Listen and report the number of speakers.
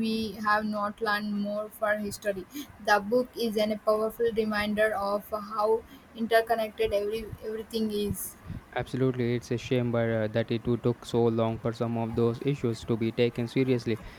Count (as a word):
two